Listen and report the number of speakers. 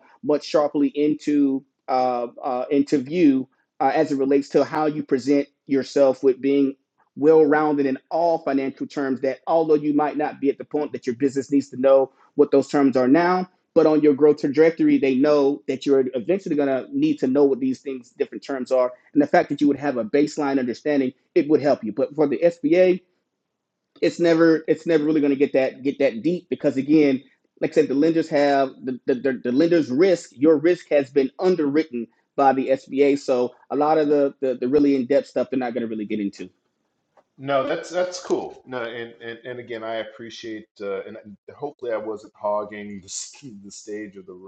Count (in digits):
2